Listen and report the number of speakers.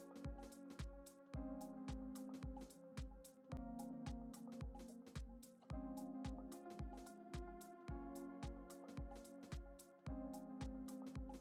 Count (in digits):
0